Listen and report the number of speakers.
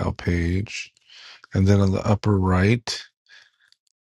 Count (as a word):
one